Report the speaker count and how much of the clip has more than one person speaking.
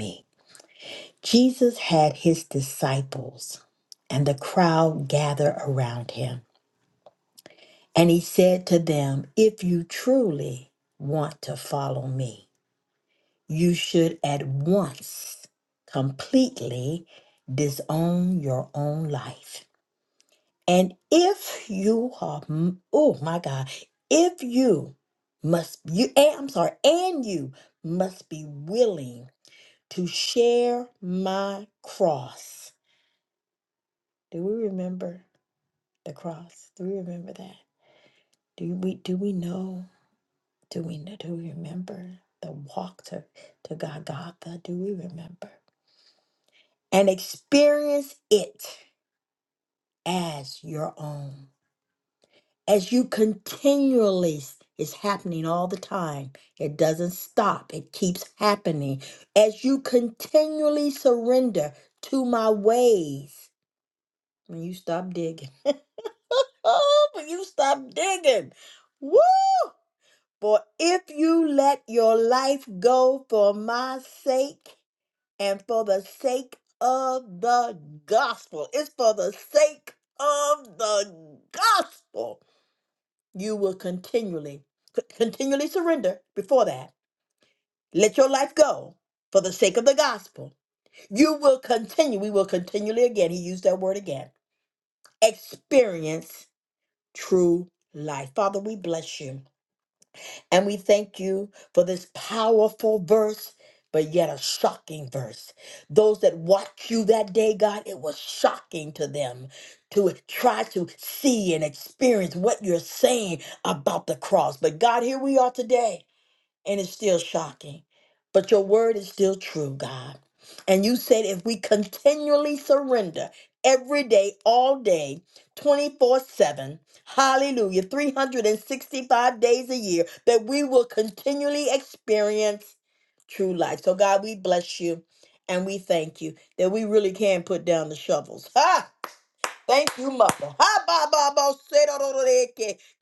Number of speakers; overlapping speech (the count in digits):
1, no overlap